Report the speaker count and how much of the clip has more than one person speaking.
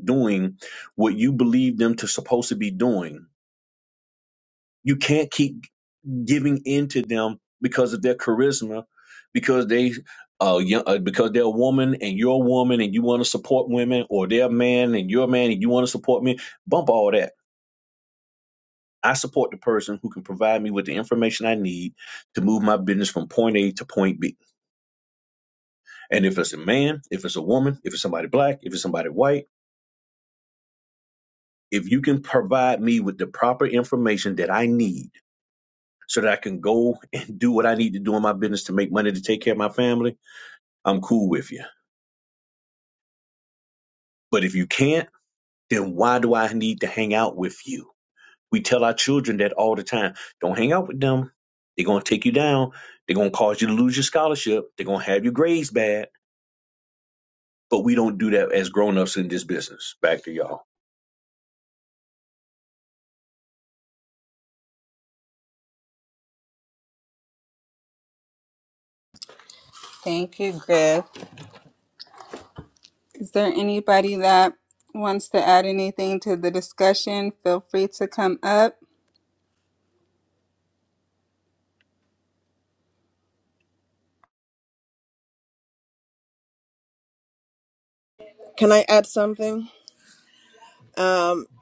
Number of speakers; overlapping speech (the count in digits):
3, no overlap